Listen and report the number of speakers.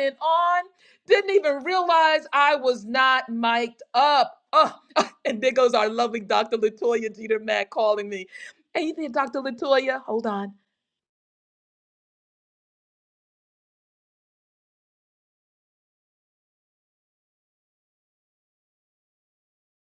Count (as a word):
one